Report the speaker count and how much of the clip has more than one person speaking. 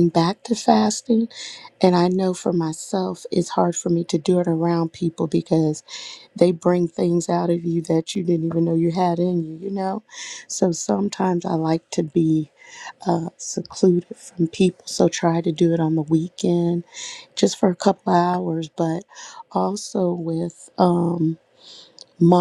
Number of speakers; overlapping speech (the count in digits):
1, no overlap